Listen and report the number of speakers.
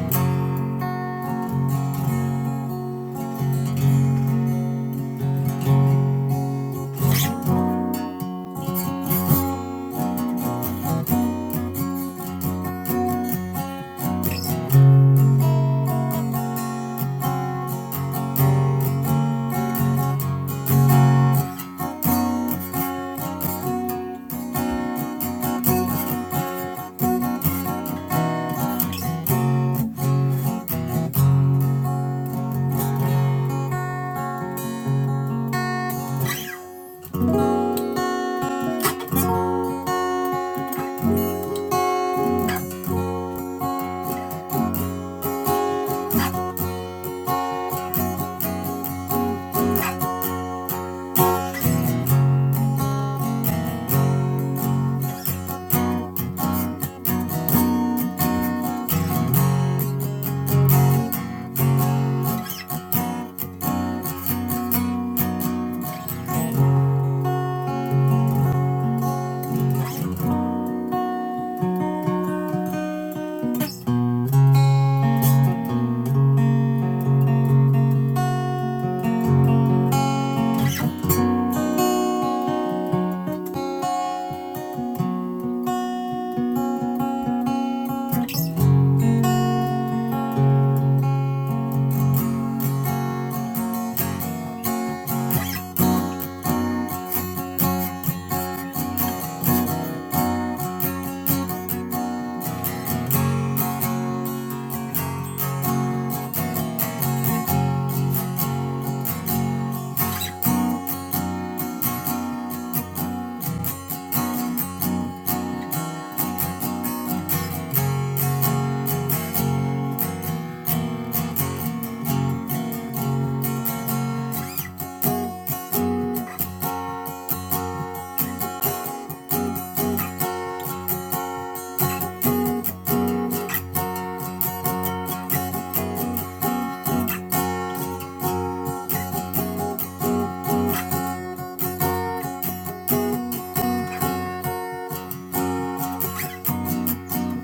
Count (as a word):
zero